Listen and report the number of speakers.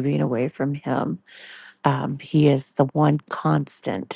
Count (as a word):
one